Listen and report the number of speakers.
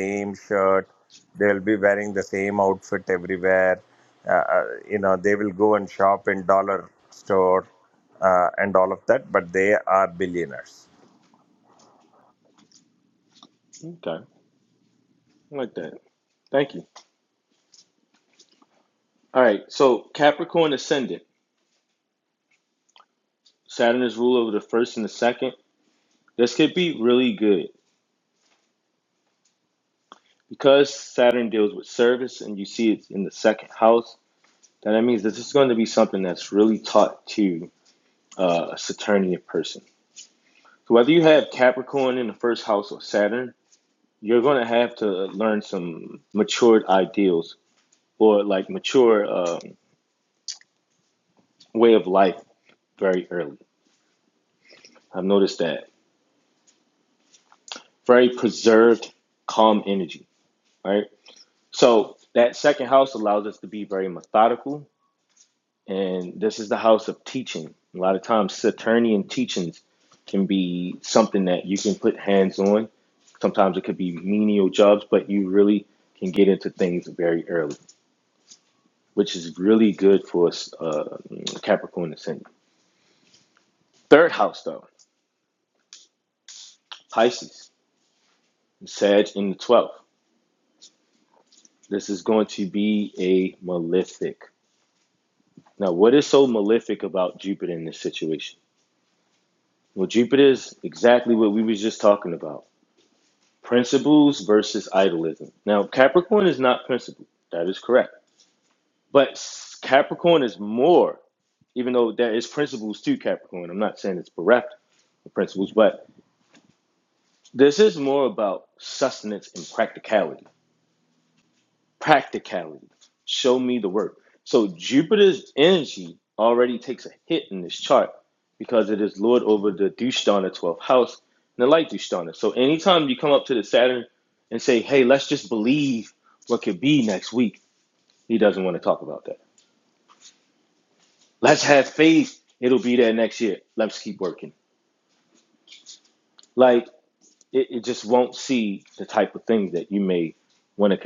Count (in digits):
2